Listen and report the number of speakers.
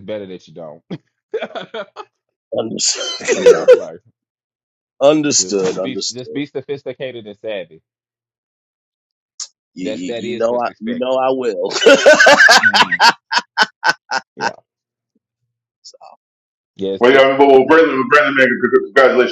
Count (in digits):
3